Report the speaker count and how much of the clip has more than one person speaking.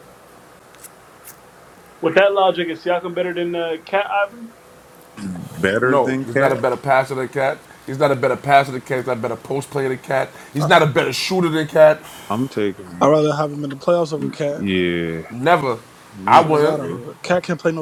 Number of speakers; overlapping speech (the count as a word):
four, about 13%